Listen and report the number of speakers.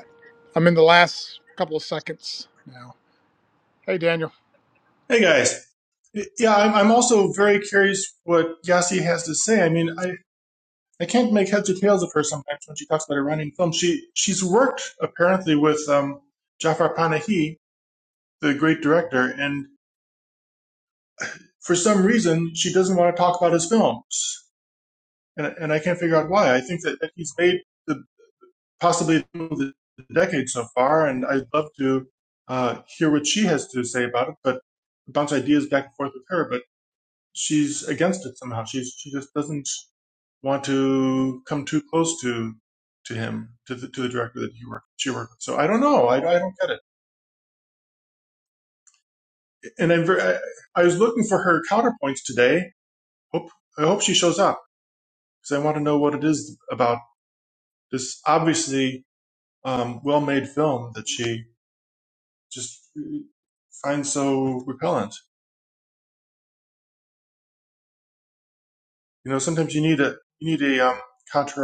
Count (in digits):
2